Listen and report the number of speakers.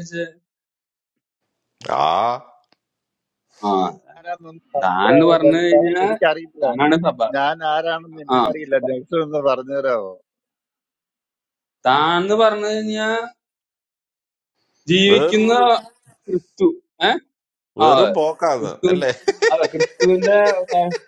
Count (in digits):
3